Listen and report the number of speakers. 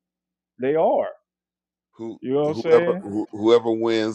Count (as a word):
two